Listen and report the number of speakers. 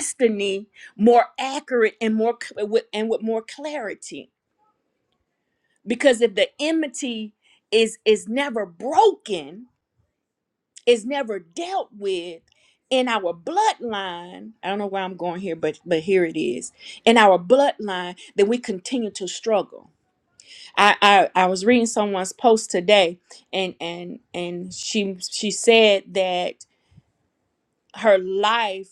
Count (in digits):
1